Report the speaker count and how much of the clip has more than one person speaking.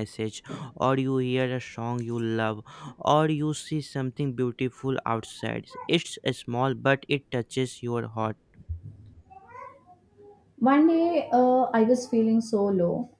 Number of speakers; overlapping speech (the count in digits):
2, no overlap